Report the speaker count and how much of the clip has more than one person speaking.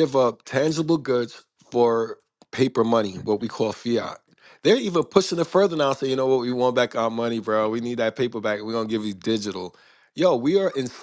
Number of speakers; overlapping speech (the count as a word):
one, no overlap